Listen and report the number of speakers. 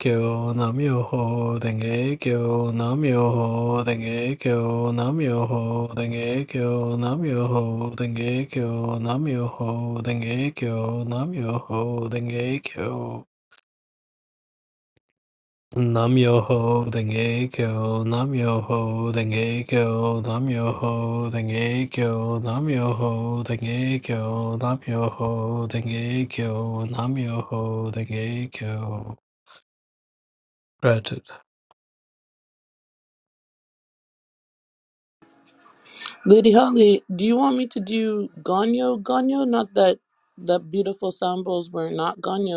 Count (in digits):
2